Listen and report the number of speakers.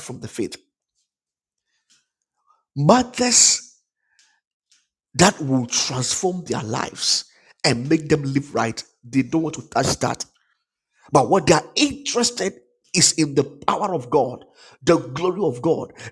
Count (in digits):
1